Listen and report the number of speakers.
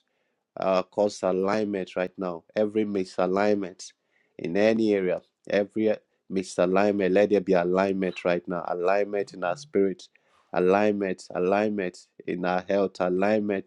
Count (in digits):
1